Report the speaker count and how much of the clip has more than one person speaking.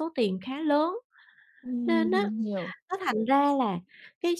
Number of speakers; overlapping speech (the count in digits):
2, about 9%